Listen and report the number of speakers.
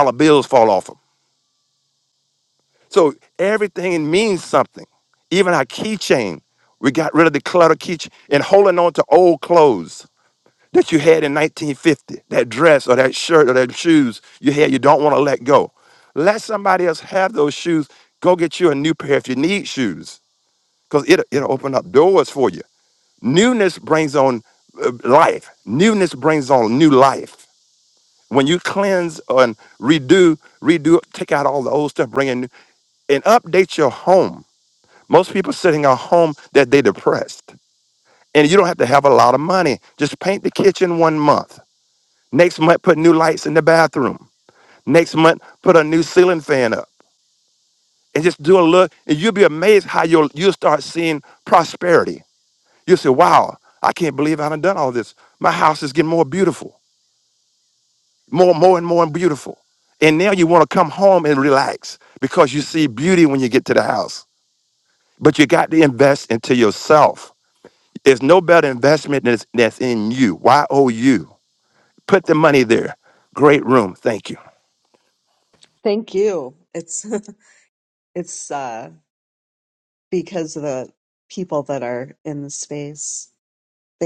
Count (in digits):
2